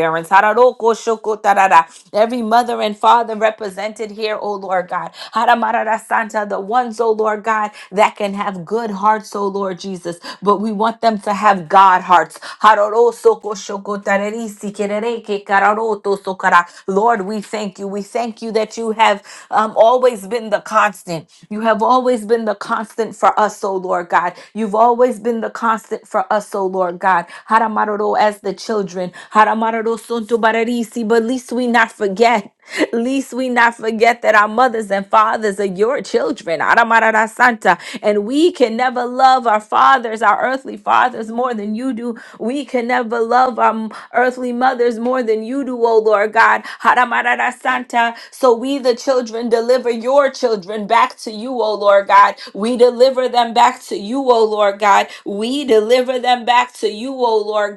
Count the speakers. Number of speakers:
1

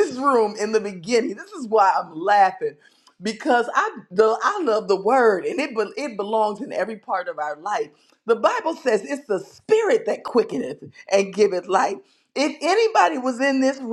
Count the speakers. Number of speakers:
1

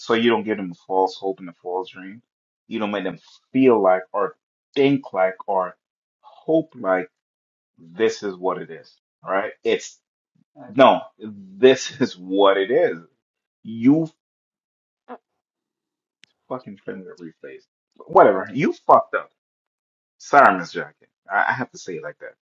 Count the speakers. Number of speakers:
1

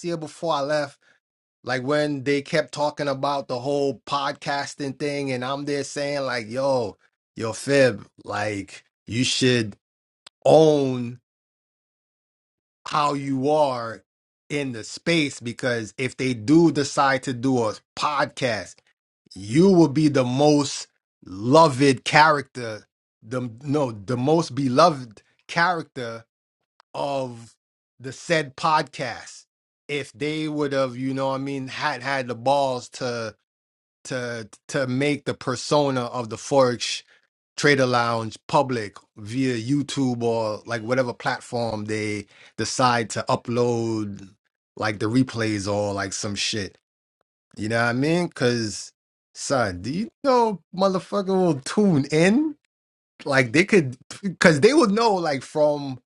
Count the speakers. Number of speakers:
1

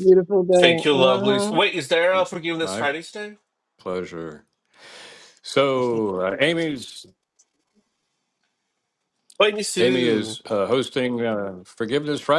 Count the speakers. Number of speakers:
3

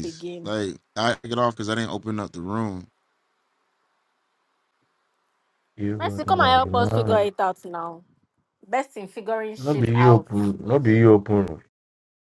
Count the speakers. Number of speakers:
3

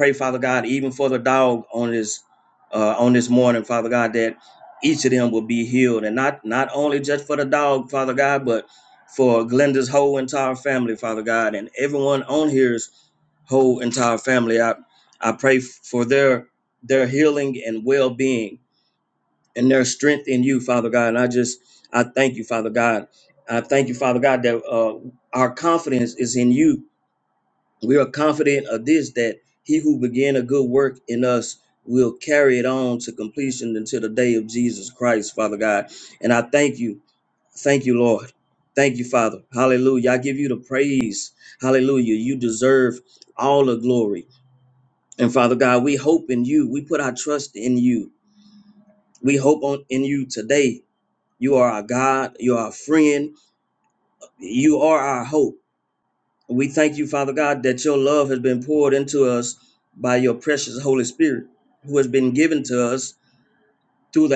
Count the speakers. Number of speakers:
1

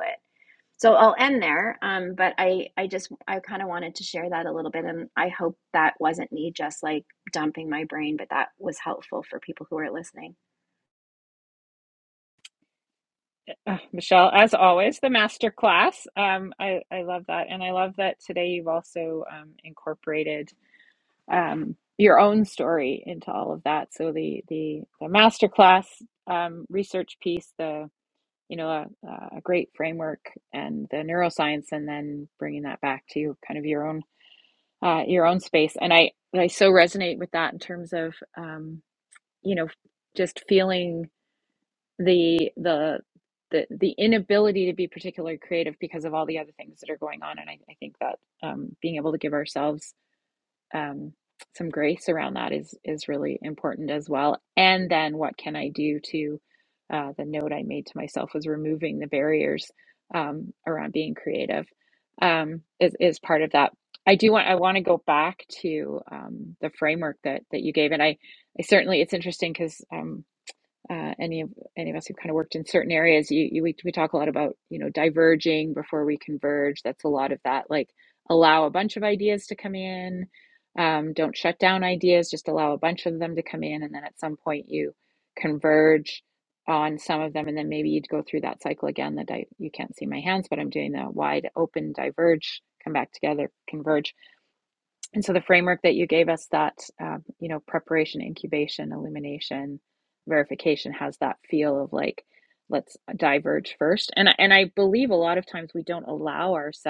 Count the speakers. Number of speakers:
2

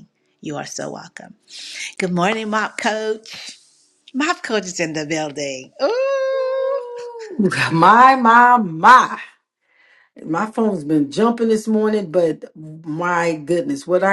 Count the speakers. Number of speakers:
2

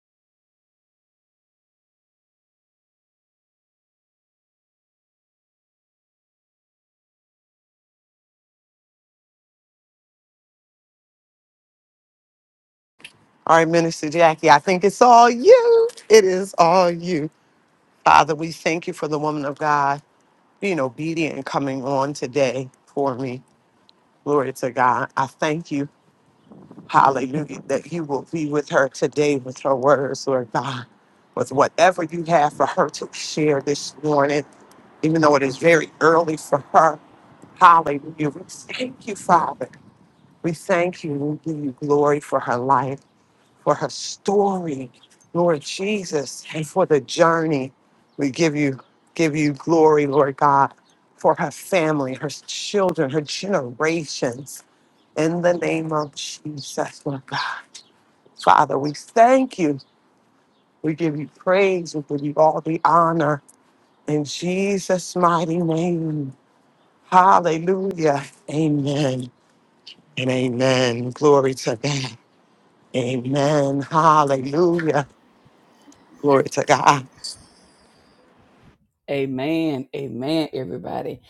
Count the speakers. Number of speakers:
2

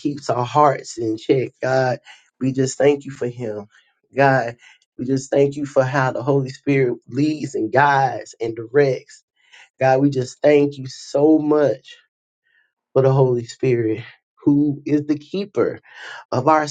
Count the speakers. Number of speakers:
1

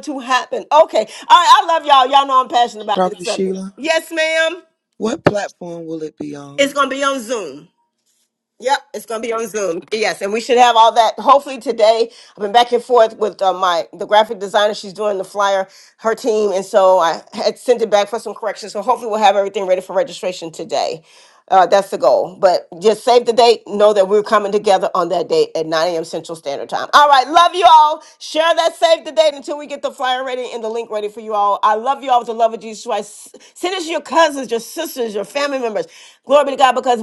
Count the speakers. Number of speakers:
2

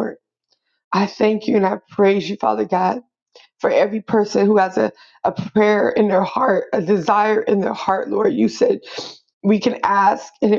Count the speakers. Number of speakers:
1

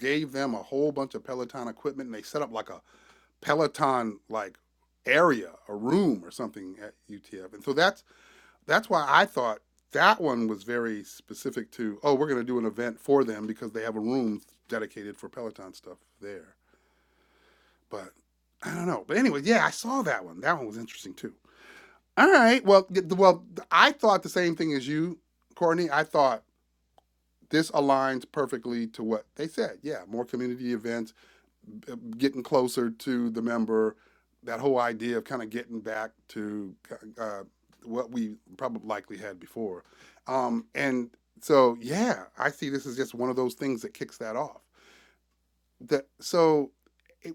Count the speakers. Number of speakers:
1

